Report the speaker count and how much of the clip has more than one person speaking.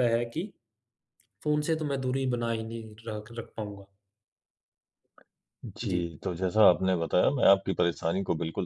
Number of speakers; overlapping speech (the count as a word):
two, about 3%